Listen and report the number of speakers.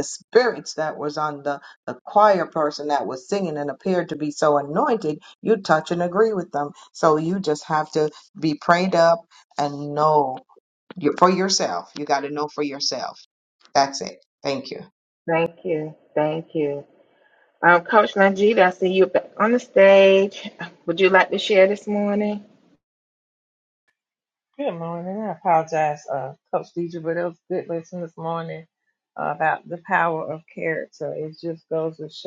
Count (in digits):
3